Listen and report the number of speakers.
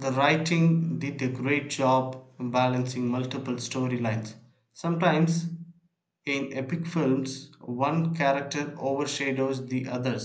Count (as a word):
one